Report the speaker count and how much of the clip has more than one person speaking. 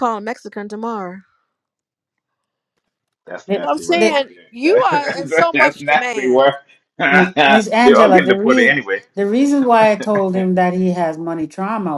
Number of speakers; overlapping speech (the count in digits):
3, about 34%